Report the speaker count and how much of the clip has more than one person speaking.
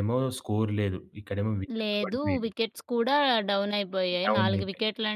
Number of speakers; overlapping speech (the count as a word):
two, about 25%